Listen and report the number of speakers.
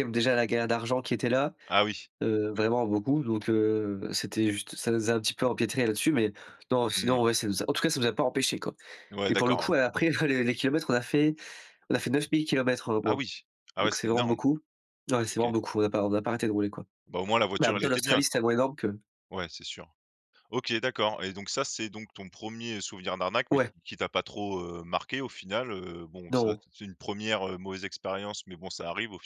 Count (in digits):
2